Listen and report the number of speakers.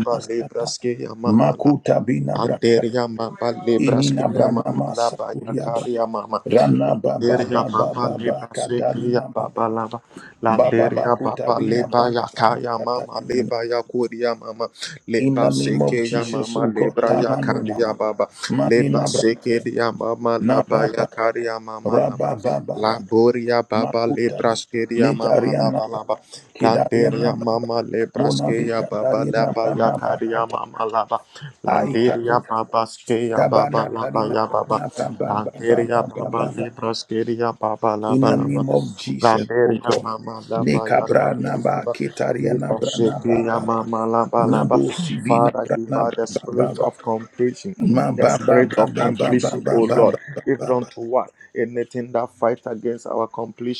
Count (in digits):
2